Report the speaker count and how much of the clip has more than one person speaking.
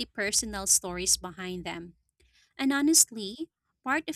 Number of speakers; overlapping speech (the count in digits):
1, no overlap